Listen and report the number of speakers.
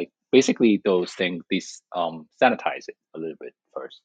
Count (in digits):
1